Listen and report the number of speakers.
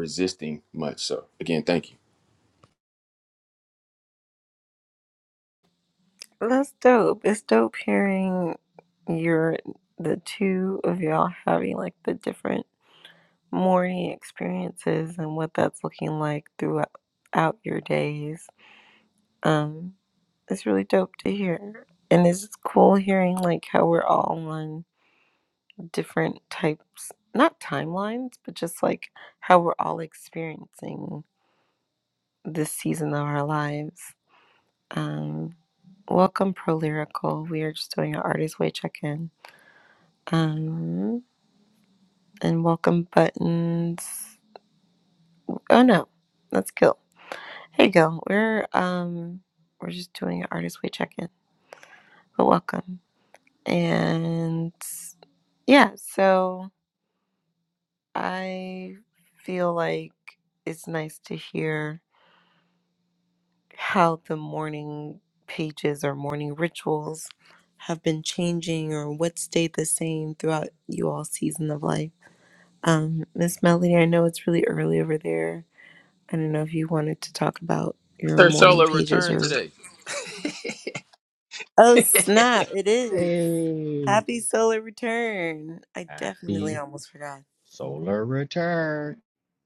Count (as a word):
three